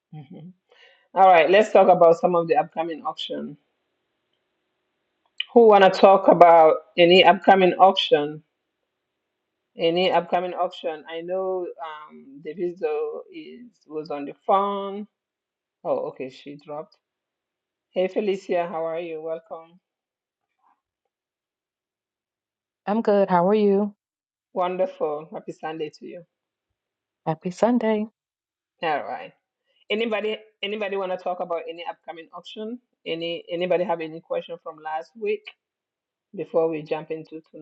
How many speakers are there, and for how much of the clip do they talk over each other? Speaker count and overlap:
2, no overlap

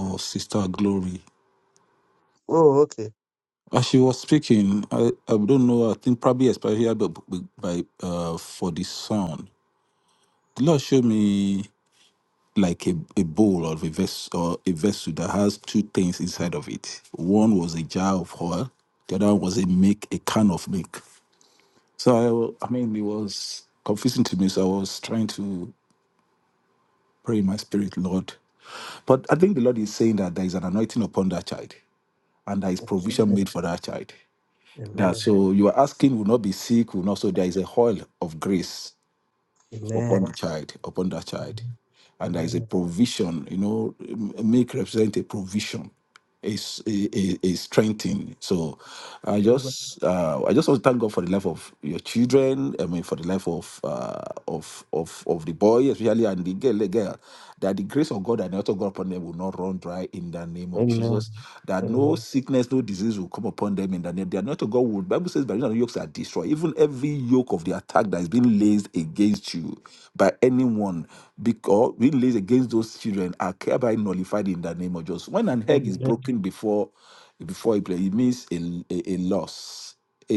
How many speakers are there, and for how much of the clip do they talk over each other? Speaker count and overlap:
2, about 4%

